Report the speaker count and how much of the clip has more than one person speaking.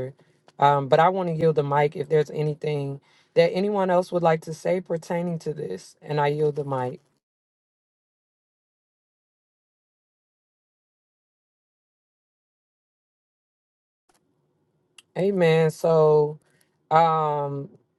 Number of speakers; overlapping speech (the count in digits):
1, no overlap